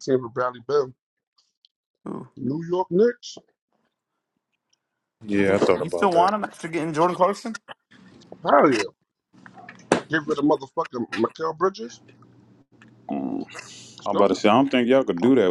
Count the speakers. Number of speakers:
three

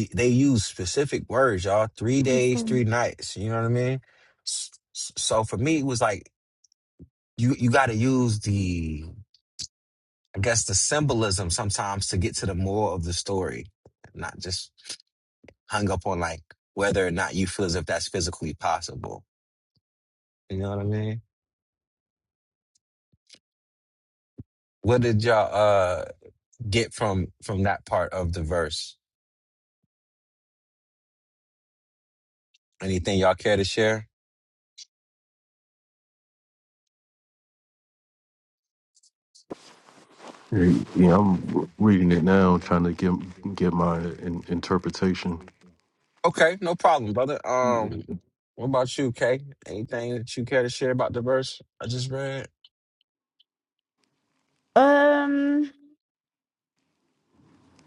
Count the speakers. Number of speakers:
three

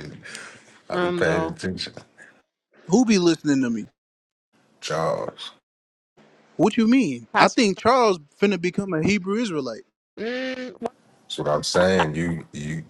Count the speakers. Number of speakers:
three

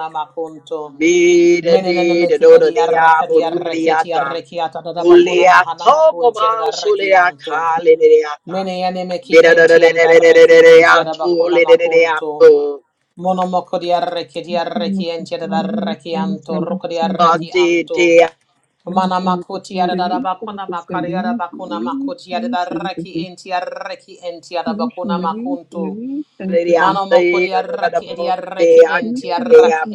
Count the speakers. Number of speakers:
three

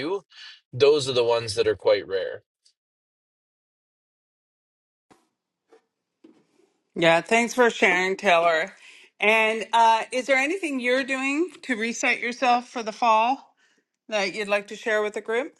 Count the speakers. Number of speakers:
two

